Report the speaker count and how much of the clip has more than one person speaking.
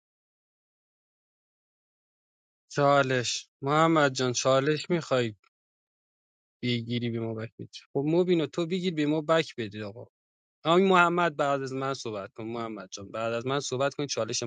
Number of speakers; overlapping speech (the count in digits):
1, no overlap